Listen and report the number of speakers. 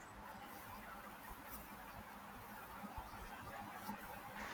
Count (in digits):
0